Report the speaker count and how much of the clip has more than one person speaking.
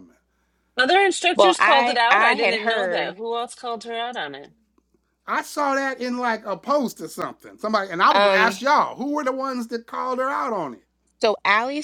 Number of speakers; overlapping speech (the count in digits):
3, about 19%